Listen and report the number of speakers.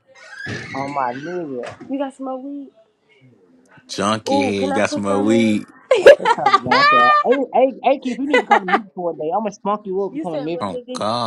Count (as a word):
three